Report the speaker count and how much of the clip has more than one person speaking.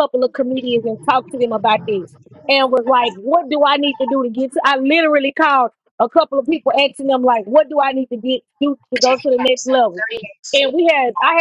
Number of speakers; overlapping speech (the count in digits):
1, no overlap